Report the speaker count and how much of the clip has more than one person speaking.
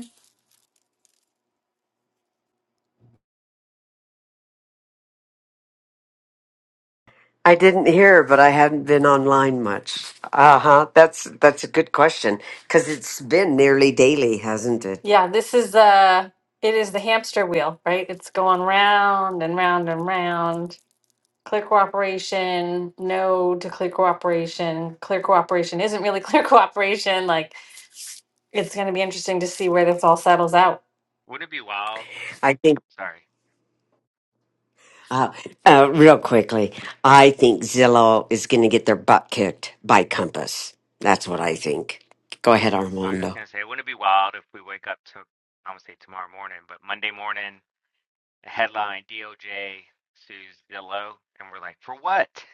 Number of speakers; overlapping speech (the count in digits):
3, about 1%